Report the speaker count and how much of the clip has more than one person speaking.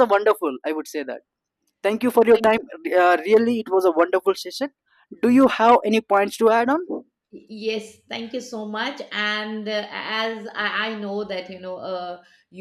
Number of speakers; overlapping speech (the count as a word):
two, no overlap